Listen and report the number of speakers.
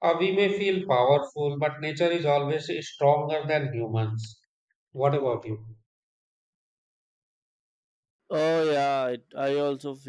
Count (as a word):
two